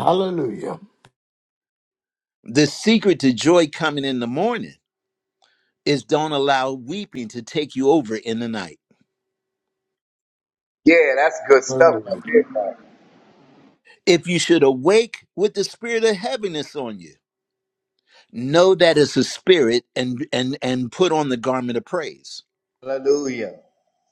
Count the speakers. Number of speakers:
3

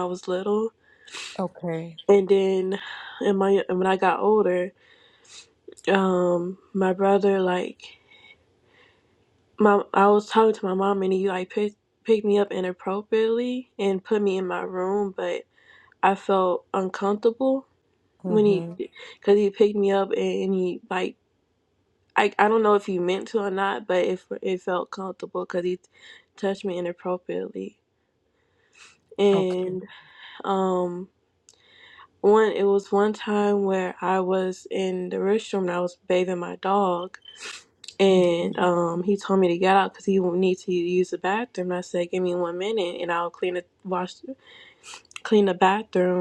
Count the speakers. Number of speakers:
2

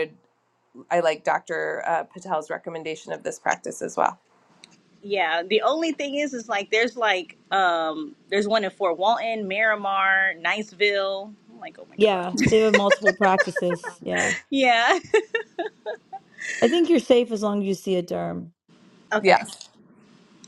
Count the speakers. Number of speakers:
3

